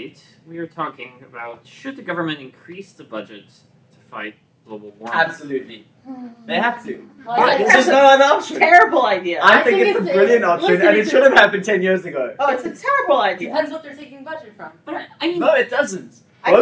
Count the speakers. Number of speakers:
4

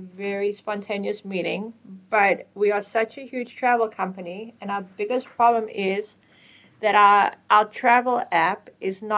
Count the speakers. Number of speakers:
1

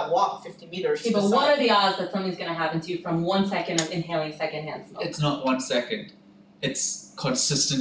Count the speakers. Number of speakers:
3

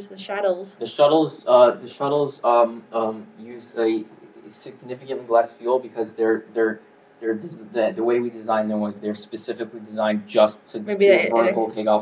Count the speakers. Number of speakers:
2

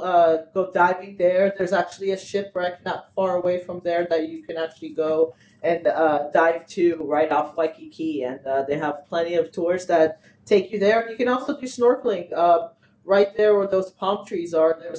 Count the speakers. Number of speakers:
1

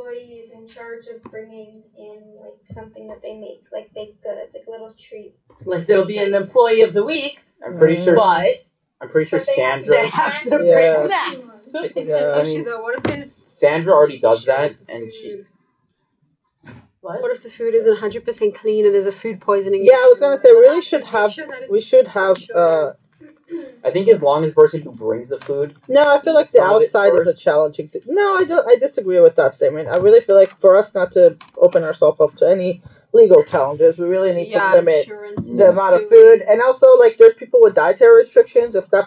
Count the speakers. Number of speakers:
5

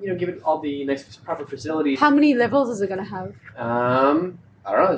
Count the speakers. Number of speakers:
2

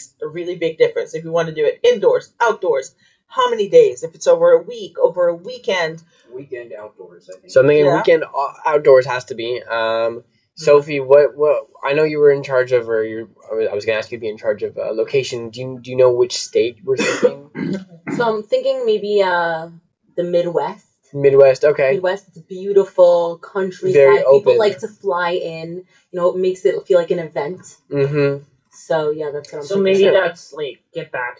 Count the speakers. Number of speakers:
5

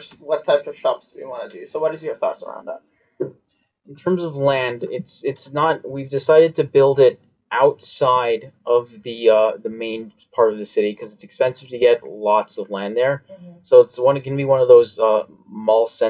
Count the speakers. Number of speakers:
2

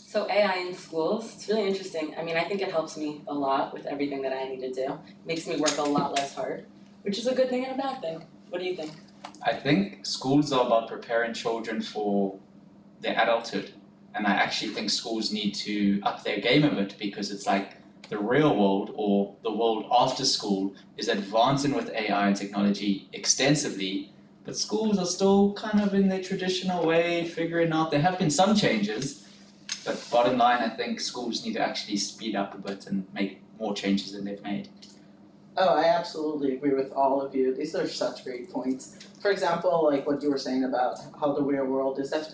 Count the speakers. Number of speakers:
3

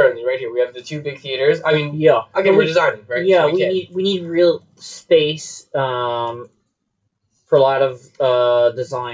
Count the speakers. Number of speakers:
2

